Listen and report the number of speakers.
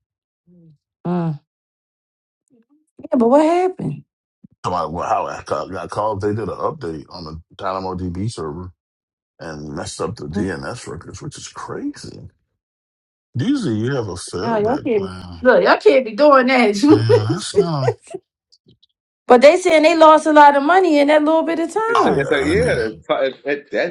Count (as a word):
three